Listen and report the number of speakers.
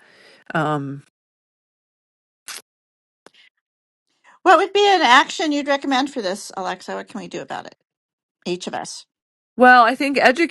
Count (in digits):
2